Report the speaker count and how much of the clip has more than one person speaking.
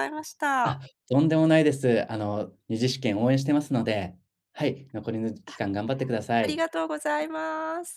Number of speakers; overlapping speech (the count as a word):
two, about 5%